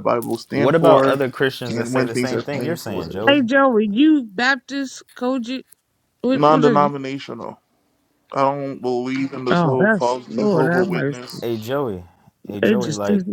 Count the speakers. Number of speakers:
three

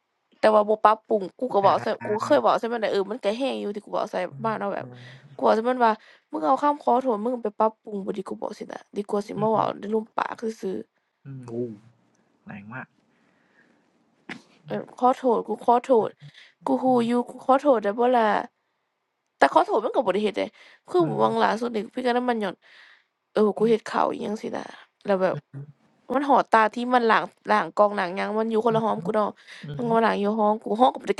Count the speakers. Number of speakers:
two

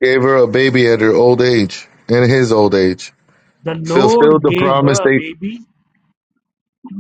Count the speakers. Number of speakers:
two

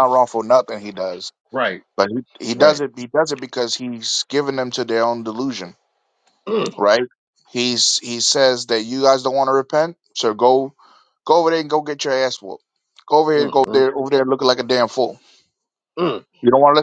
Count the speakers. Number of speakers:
two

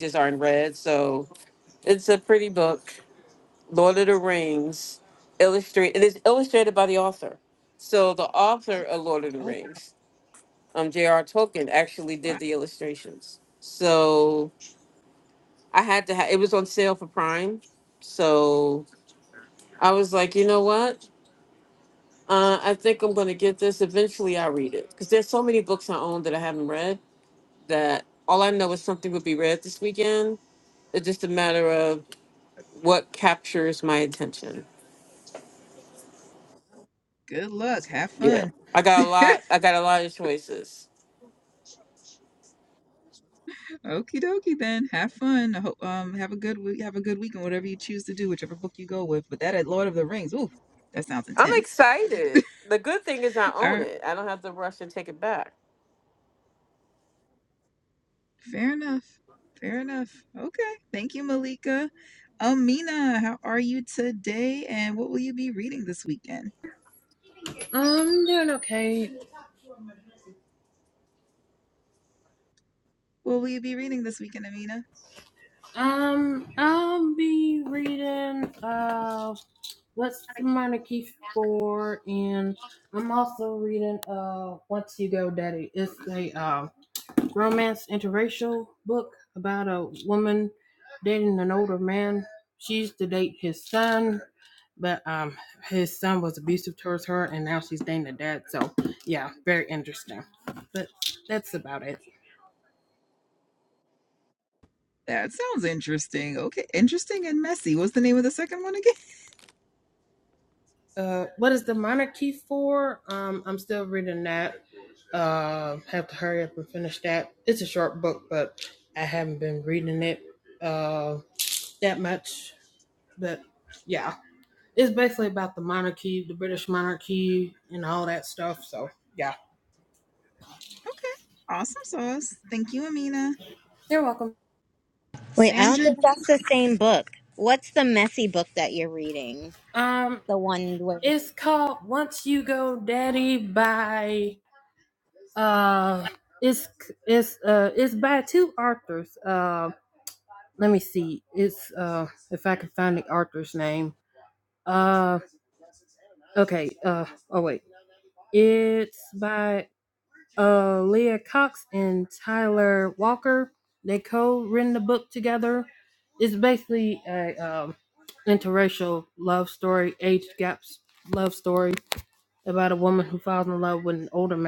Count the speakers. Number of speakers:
four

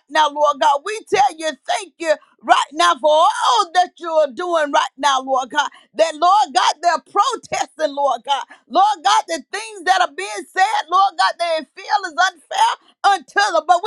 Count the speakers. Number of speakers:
one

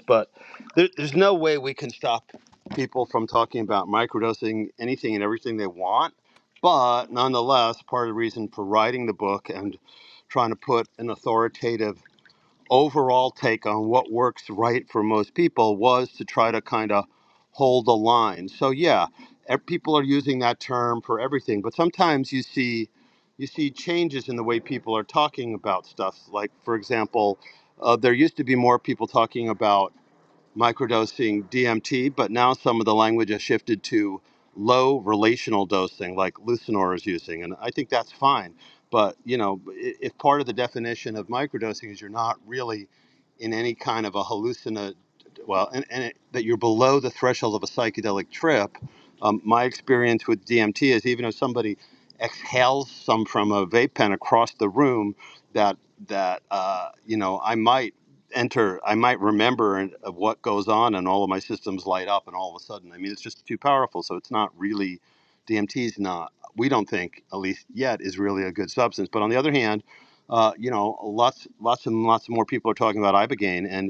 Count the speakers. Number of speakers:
one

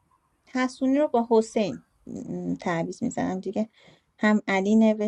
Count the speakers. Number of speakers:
one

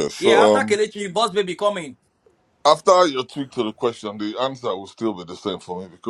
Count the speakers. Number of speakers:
two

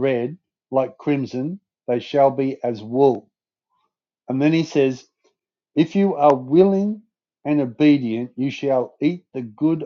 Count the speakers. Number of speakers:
one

